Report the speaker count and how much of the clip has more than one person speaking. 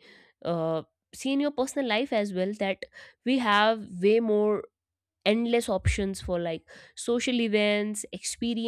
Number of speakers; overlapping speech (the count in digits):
1, no overlap